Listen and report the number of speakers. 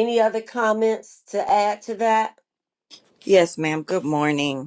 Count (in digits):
2